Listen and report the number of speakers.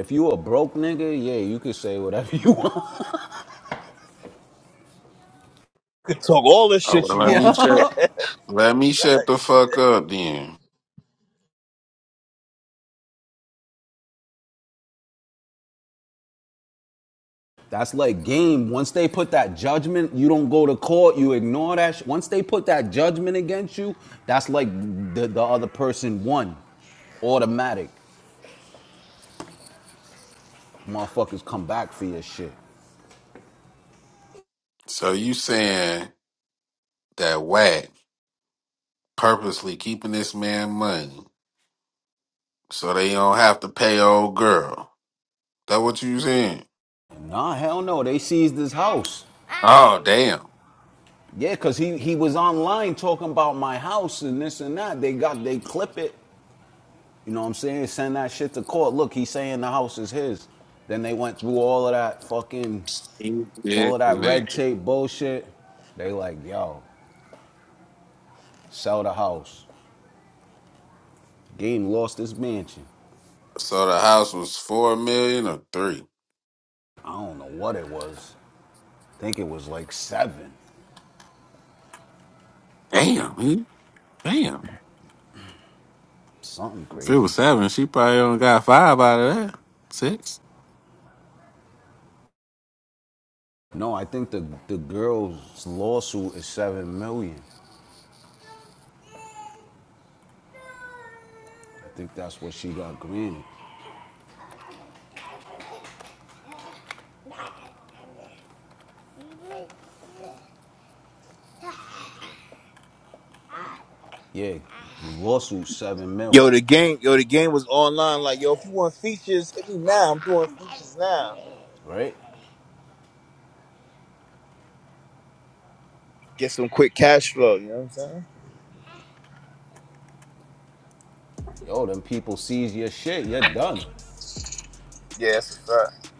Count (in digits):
3